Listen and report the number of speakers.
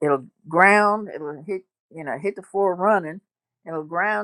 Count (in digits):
1